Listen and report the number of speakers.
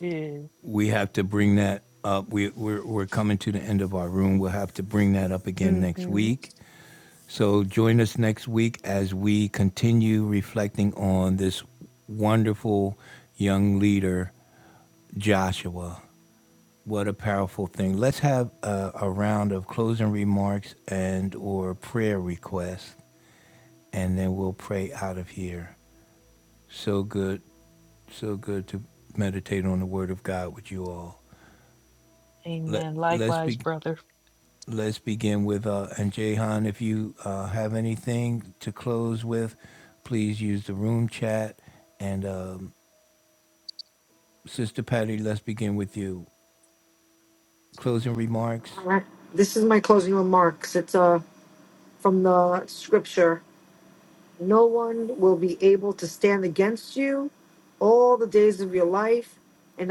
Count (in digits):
3